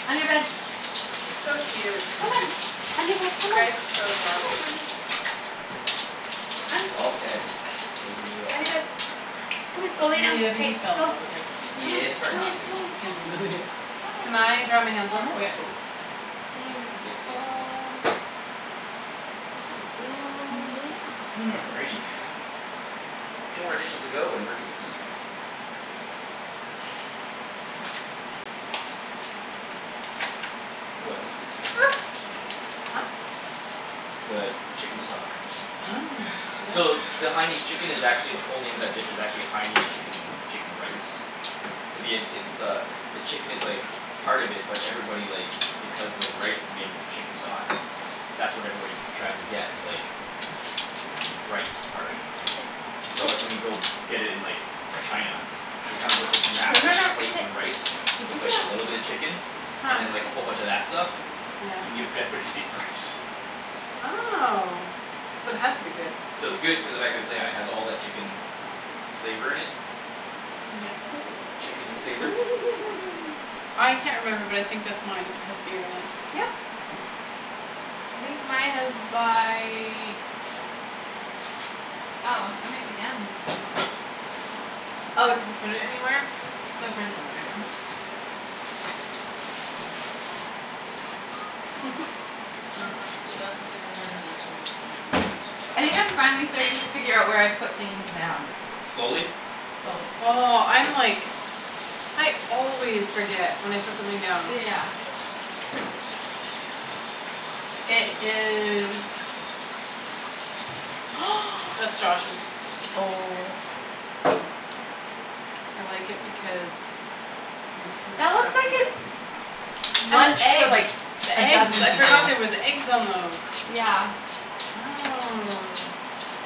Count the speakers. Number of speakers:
three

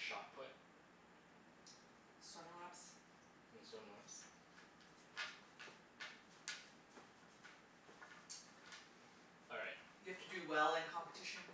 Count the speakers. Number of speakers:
two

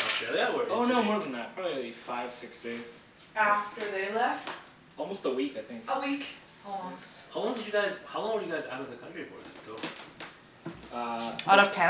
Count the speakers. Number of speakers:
three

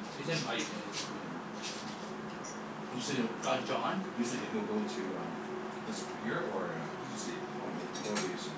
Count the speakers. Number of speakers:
two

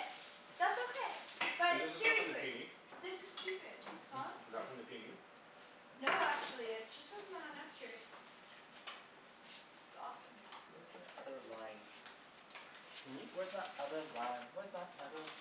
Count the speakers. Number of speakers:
three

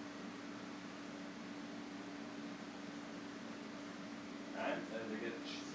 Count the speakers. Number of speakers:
one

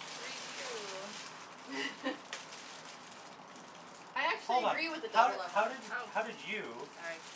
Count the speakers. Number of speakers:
three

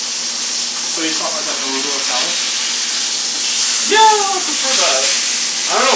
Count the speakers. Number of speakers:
two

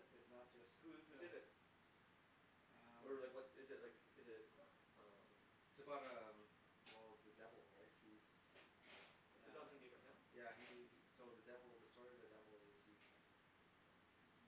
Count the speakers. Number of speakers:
two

